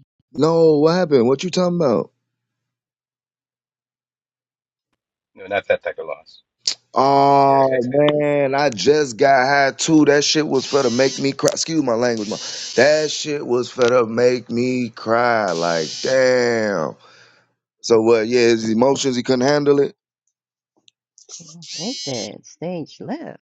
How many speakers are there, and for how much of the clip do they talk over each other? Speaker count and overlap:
three, about 2%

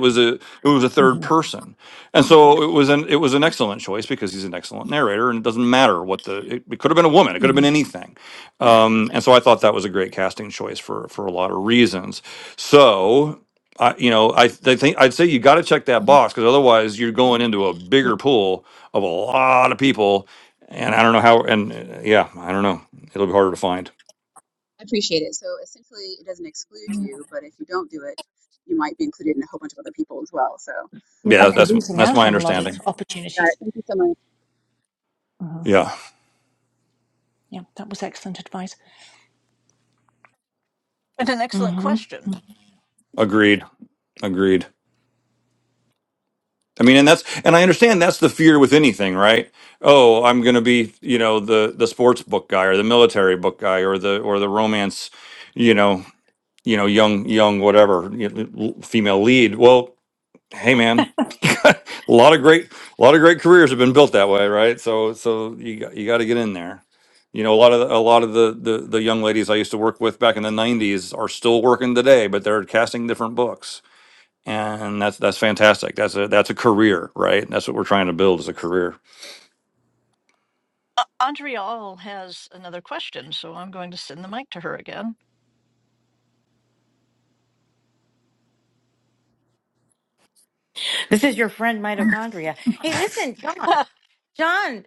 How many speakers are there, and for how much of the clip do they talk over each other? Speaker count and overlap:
five, about 3%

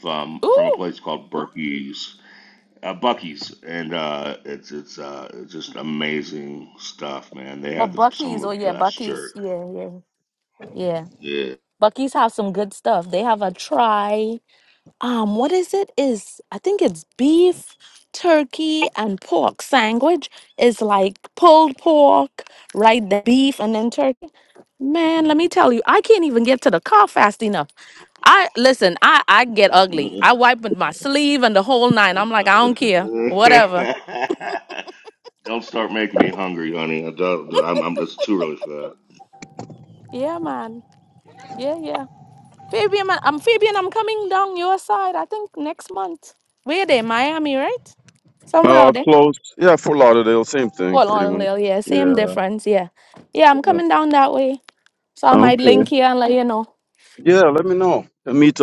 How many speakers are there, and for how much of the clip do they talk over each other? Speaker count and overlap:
three, about 7%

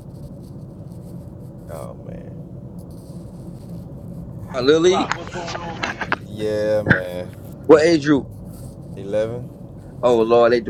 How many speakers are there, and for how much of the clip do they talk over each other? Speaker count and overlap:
three, about 2%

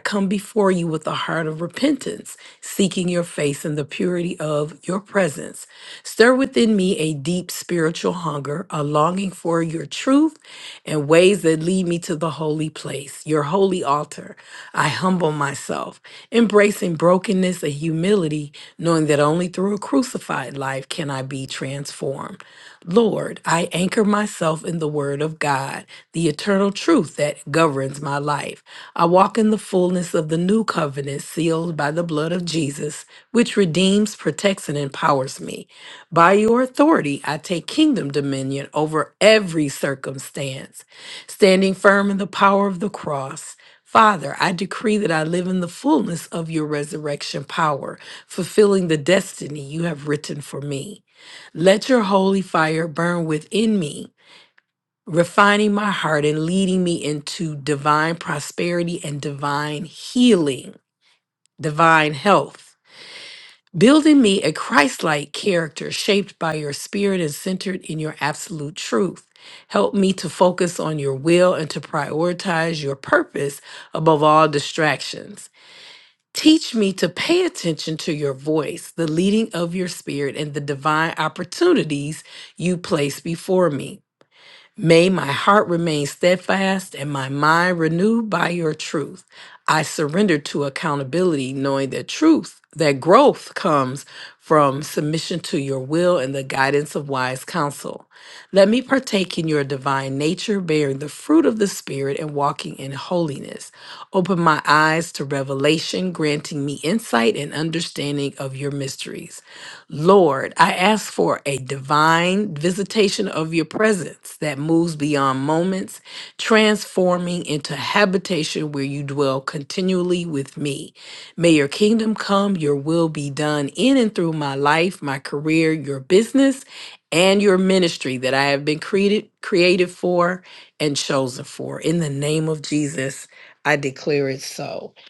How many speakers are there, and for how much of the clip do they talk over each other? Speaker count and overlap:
one, no overlap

